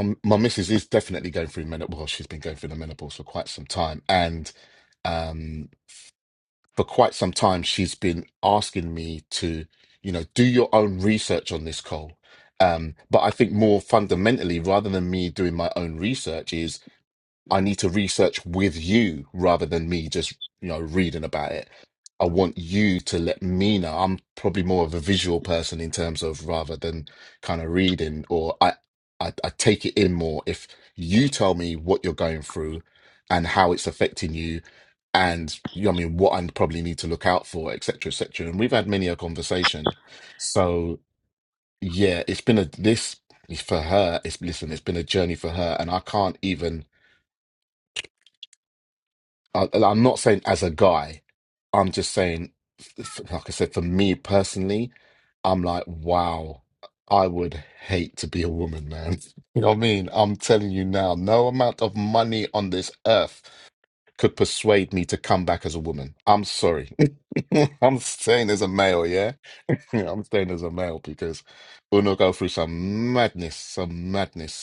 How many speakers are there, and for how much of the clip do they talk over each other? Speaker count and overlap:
one, no overlap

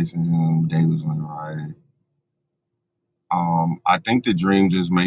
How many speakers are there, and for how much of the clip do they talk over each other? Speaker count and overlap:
one, no overlap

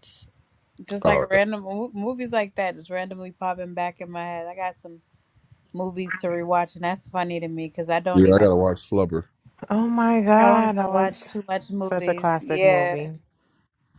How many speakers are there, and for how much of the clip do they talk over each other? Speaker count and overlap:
three, about 19%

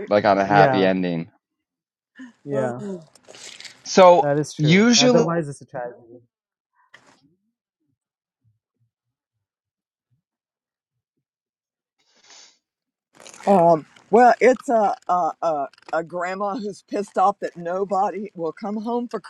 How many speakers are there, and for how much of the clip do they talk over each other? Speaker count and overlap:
three, about 7%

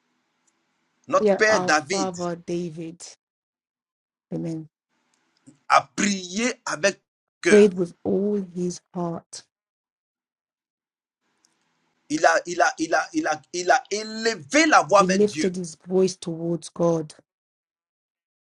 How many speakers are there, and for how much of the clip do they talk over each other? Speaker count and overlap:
two, about 8%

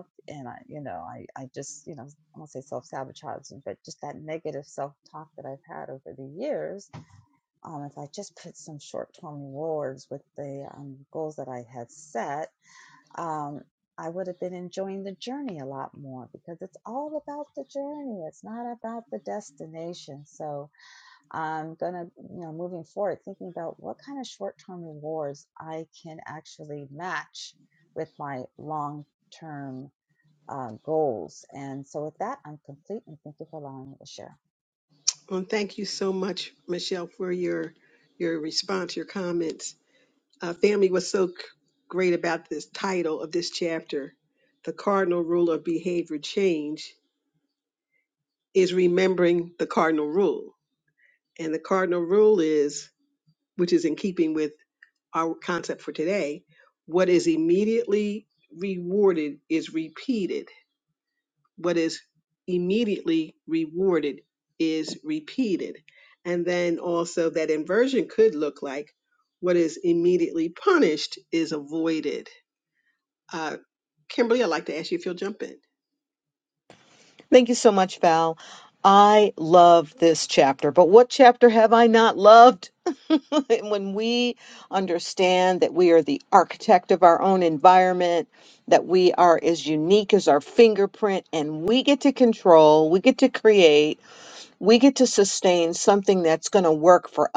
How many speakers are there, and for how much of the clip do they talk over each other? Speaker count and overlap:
three, no overlap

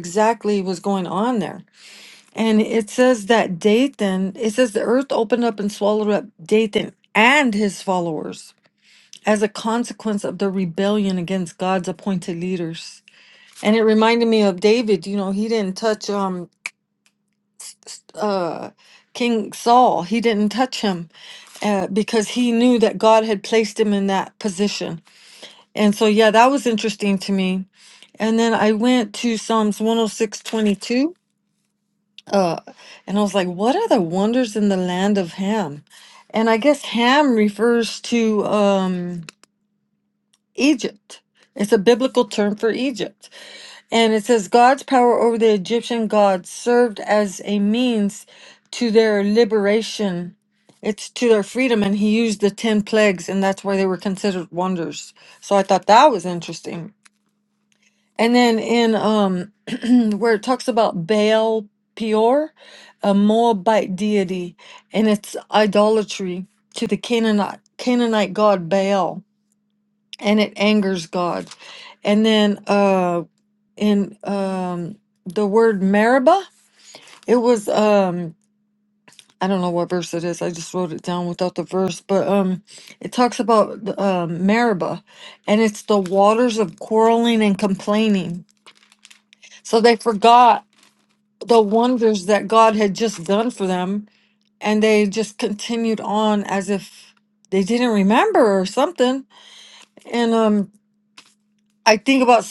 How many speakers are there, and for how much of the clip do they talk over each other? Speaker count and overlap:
one, no overlap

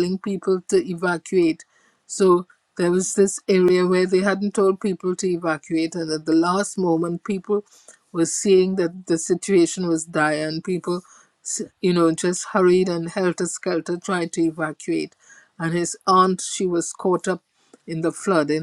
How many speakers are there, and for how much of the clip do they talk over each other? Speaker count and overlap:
one, no overlap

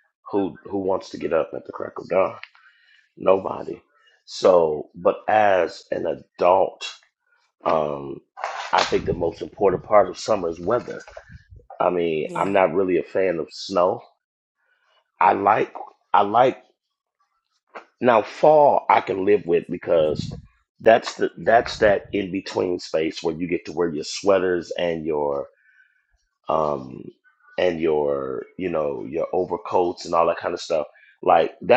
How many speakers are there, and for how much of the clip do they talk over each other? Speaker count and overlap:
one, no overlap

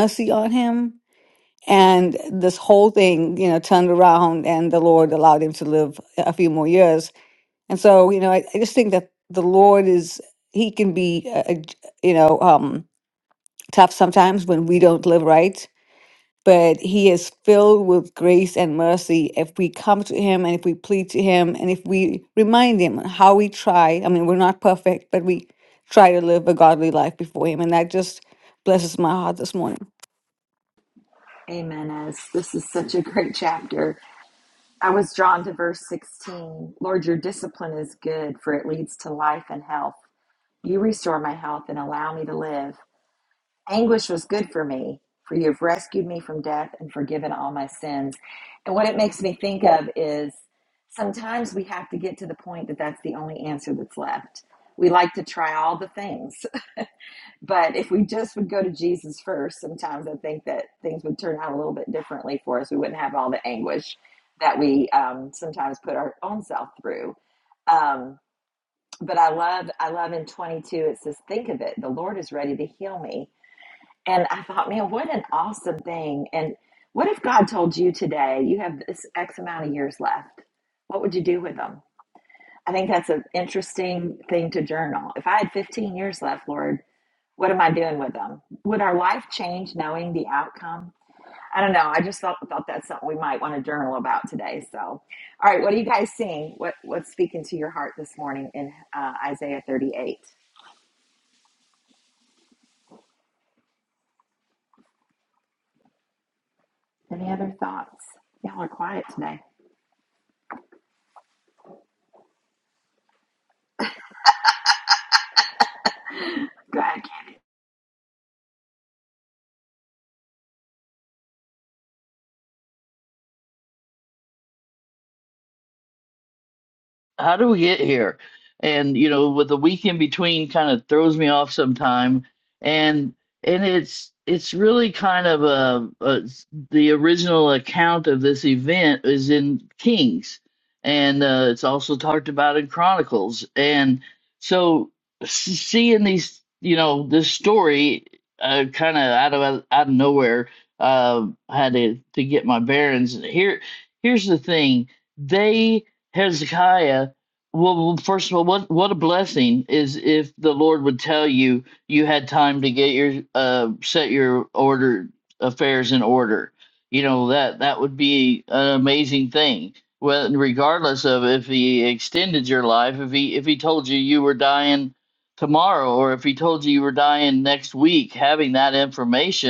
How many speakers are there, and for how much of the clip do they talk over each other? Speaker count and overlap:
three, no overlap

